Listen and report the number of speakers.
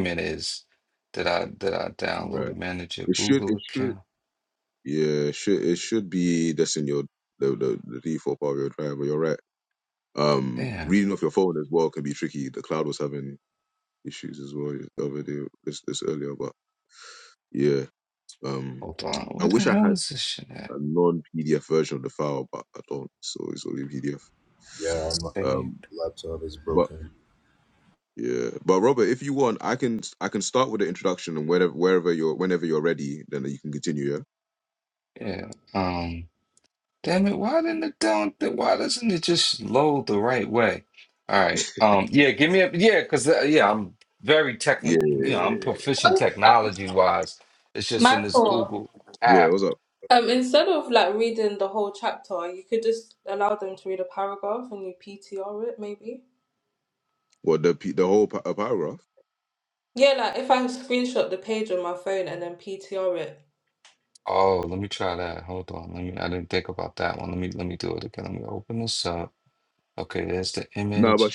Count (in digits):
4